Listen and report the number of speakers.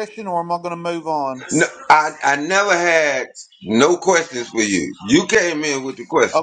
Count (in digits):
2